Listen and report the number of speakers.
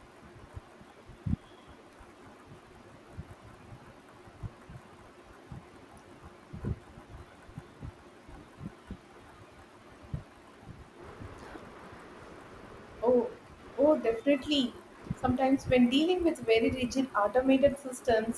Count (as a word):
one